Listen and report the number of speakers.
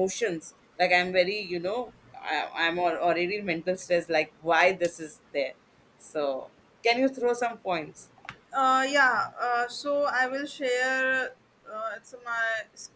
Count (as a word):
two